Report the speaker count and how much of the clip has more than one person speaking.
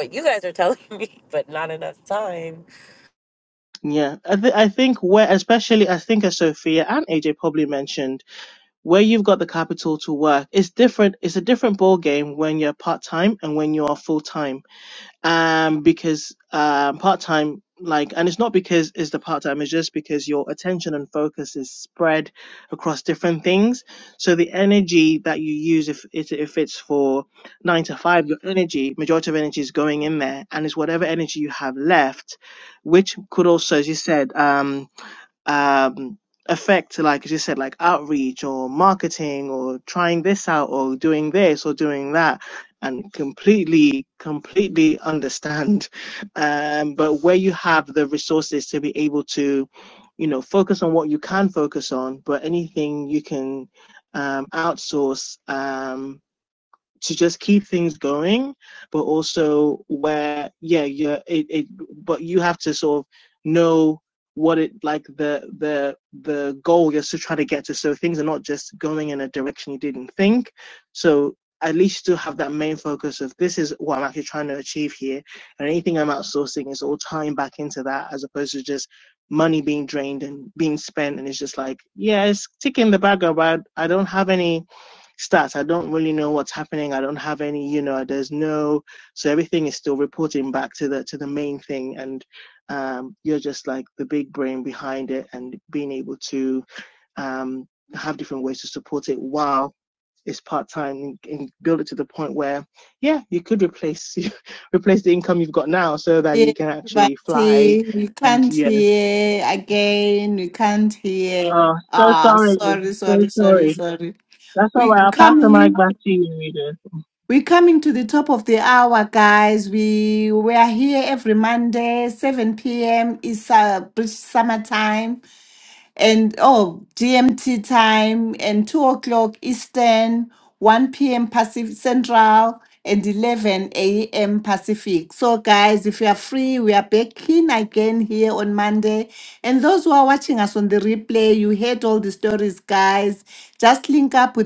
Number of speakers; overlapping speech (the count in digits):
3, about 3%